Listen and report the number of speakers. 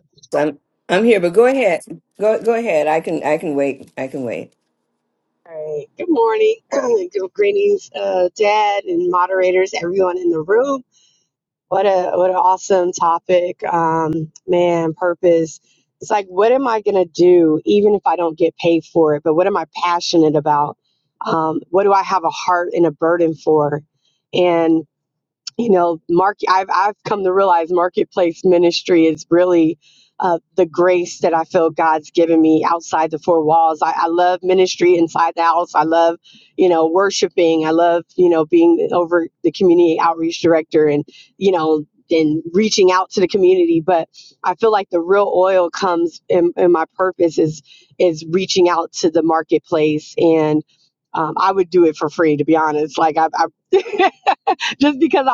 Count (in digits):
2